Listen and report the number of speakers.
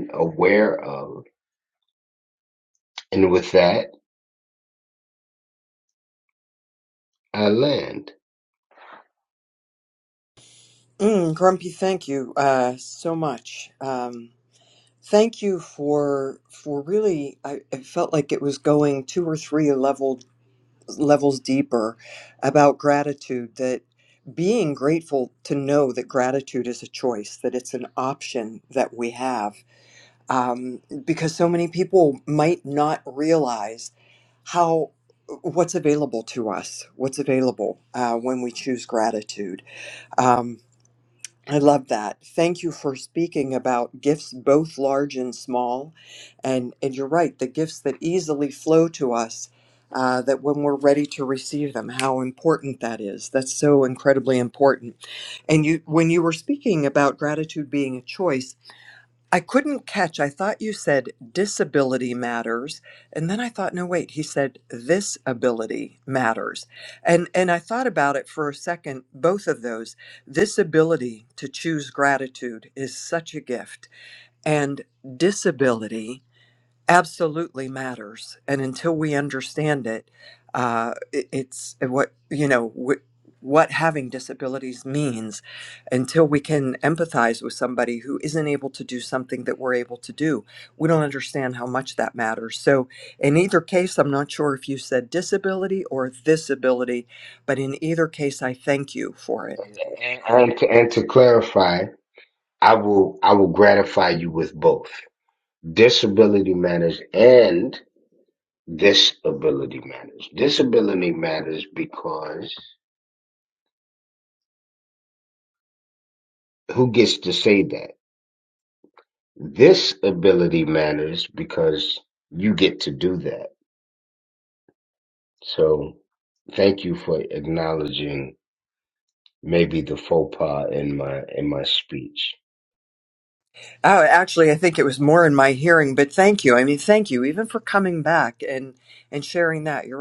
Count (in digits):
2